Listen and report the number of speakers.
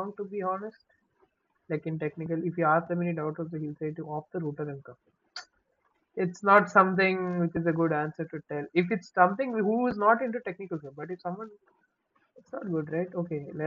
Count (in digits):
1